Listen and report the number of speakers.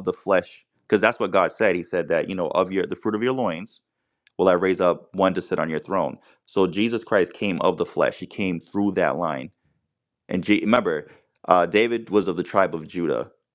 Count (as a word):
one